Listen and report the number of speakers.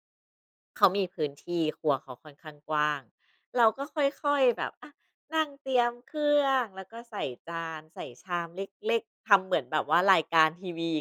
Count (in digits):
1